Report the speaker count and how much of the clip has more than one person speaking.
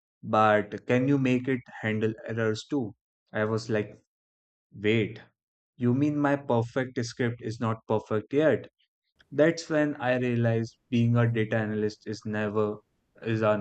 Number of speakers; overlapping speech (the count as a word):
one, no overlap